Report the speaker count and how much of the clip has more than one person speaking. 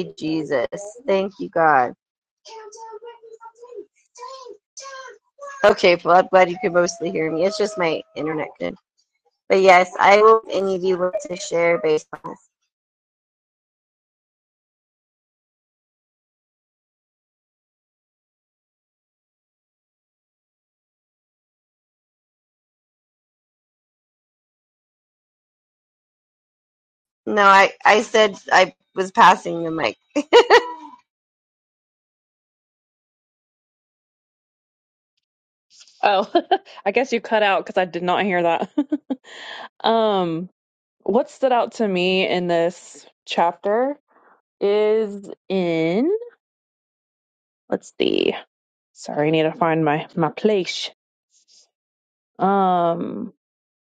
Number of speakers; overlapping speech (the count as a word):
two, no overlap